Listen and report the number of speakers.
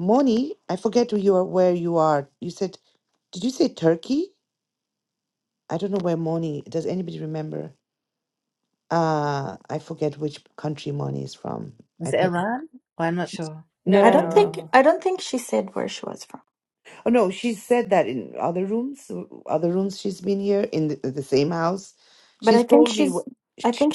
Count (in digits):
3